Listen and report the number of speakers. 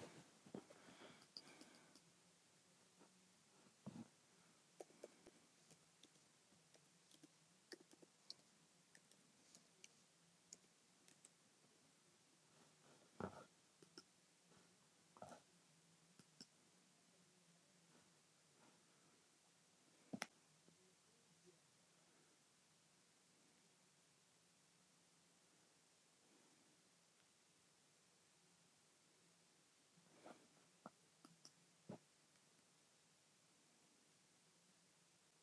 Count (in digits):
0